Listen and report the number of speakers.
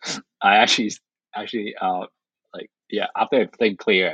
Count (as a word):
one